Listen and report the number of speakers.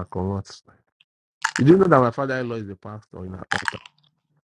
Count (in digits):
1